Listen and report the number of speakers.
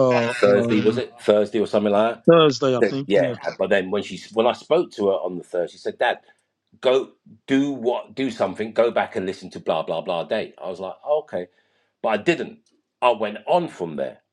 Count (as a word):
two